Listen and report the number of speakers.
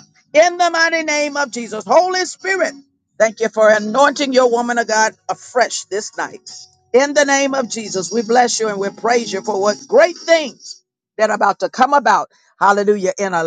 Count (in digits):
1